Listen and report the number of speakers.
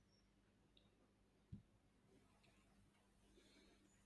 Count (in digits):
0